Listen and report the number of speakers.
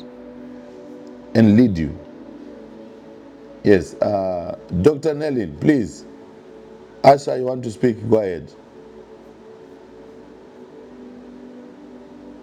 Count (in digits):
1